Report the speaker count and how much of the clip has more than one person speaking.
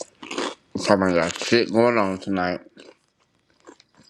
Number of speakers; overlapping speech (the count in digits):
1, no overlap